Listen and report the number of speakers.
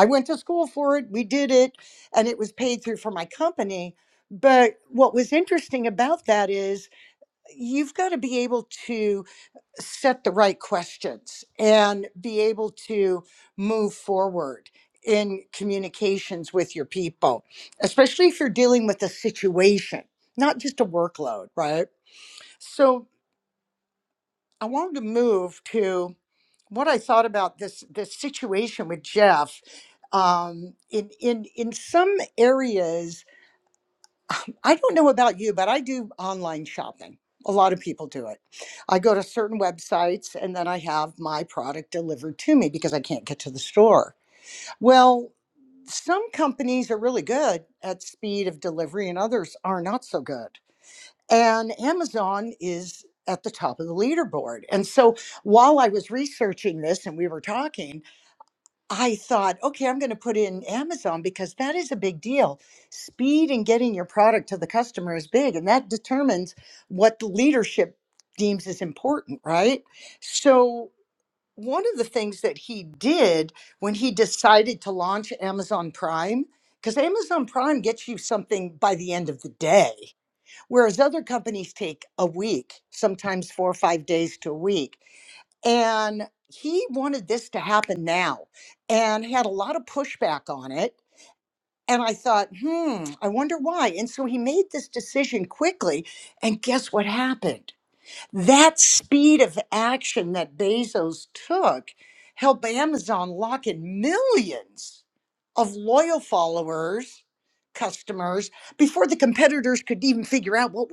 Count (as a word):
one